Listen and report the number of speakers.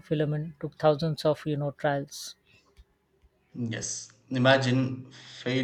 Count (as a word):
two